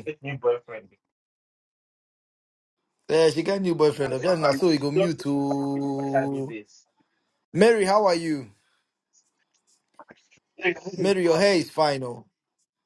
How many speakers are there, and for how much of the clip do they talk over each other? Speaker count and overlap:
2, about 12%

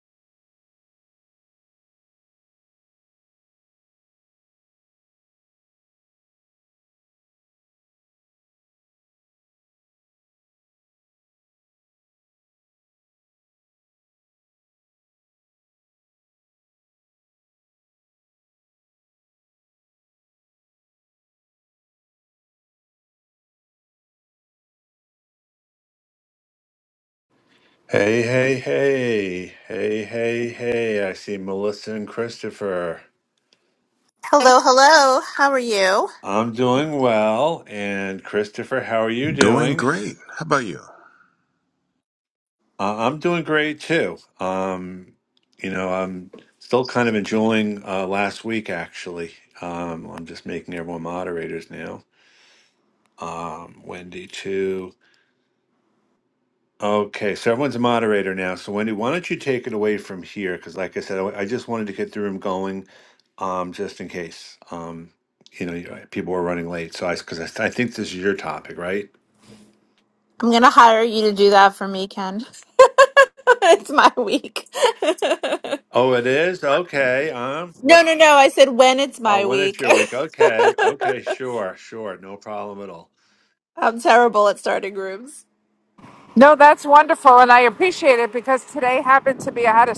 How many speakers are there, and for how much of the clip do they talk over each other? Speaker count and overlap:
4, about 2%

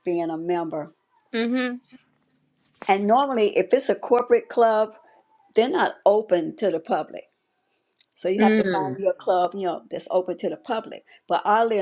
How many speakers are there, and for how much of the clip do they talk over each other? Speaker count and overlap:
2, about 5%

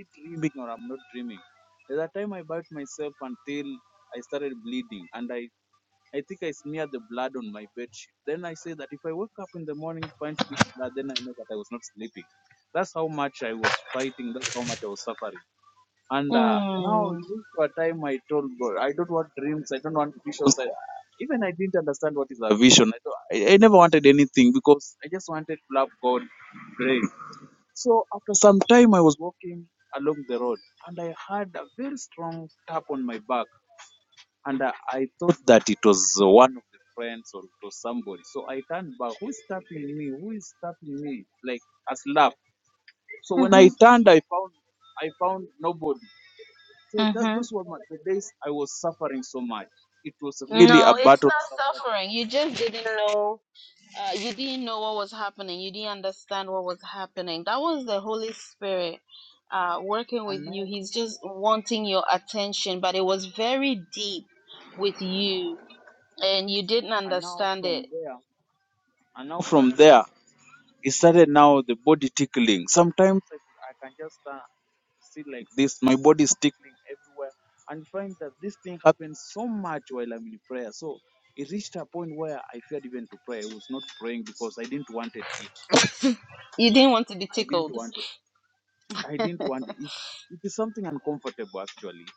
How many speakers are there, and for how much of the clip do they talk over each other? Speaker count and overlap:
2, about 5%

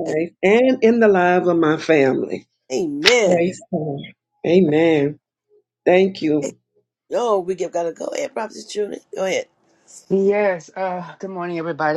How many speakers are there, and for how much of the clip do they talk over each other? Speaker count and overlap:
3, about 2%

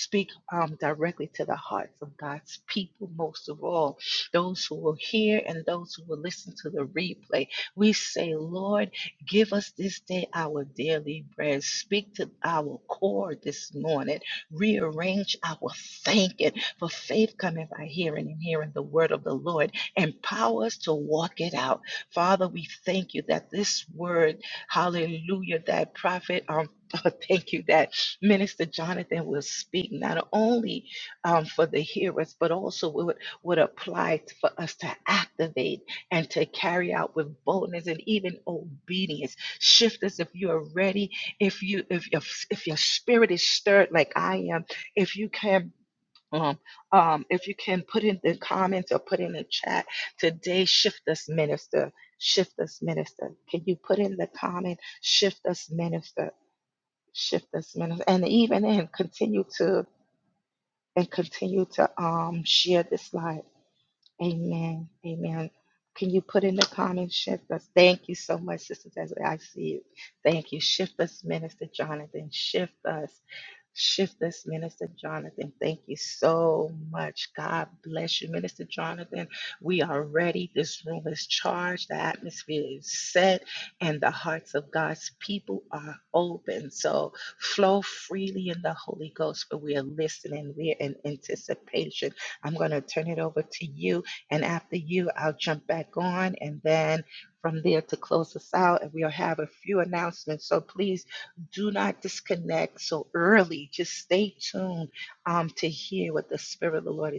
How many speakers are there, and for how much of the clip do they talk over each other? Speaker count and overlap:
1, no overlap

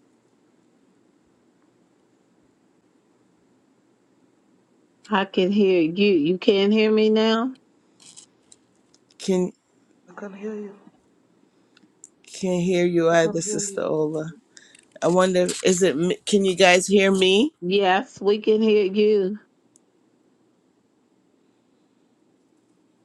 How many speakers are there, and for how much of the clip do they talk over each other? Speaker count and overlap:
3, about 5%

